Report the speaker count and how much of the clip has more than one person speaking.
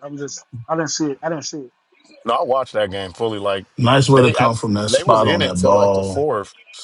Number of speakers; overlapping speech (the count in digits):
3, about 25%